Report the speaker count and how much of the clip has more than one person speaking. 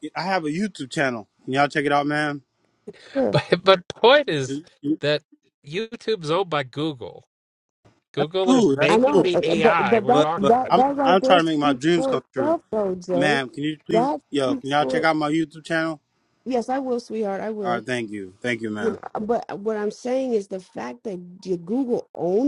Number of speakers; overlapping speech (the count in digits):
3, about 27%